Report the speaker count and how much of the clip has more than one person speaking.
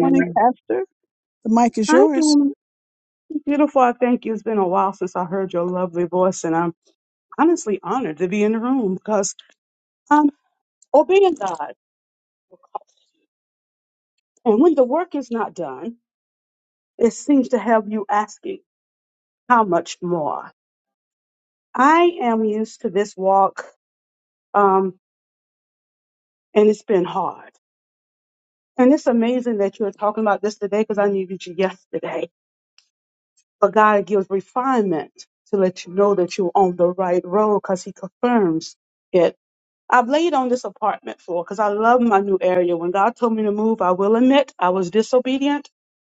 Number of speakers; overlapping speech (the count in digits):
2, about 2%